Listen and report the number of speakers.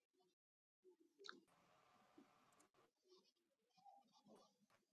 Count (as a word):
zero